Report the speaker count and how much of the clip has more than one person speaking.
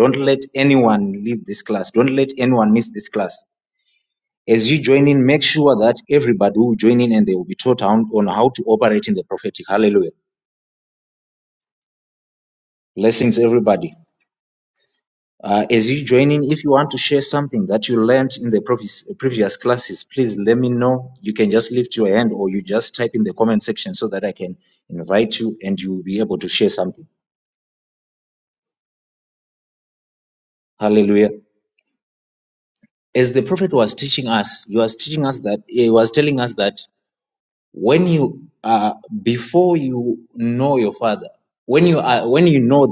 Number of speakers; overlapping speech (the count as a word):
one, no overlap